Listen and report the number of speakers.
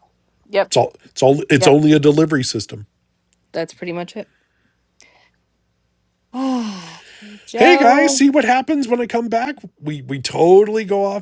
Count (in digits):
2